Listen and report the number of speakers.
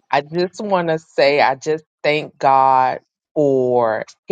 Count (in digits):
1